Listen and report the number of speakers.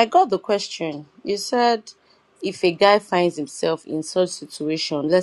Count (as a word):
one